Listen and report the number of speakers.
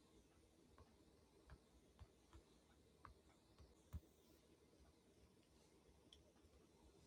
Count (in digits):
0